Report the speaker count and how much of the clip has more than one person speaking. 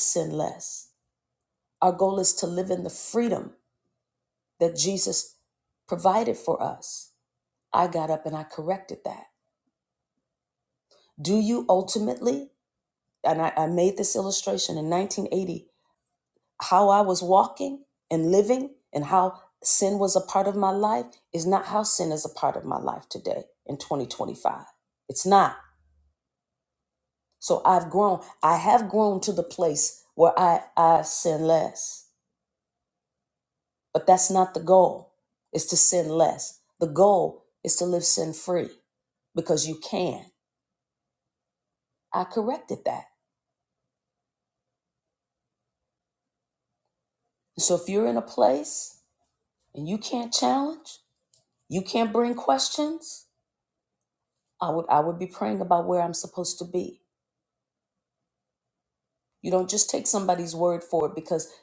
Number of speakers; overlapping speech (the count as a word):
one, no overlap